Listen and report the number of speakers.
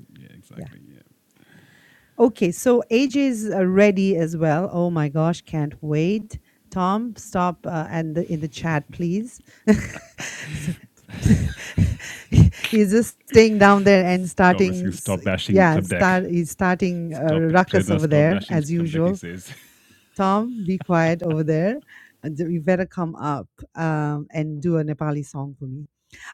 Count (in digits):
2